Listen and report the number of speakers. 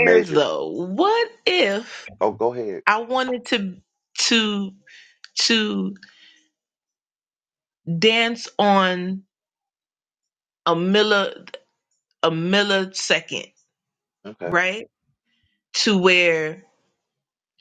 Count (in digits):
2